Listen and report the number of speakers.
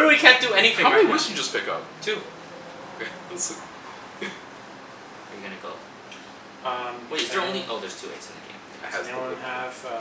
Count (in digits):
4